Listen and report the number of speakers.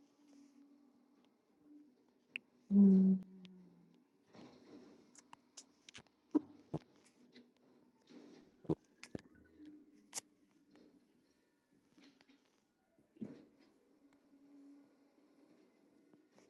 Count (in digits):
0